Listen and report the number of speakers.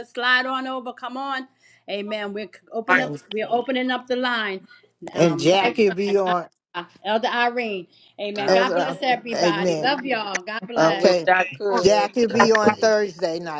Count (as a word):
three